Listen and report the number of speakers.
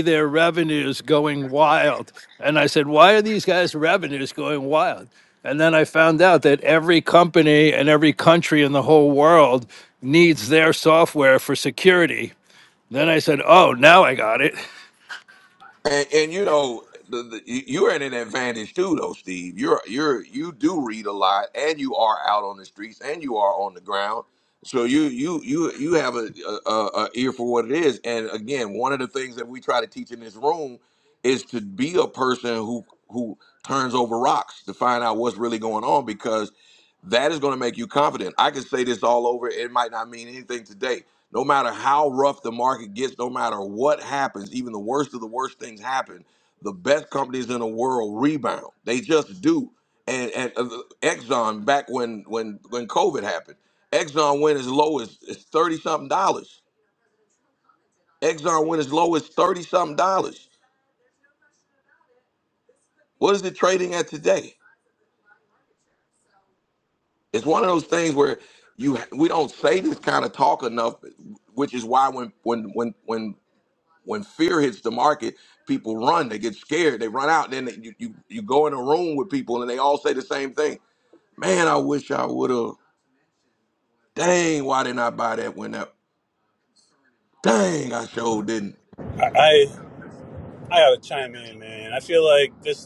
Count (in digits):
3